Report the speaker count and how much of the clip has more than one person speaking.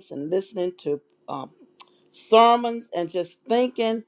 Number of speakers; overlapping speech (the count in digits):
1, no overlap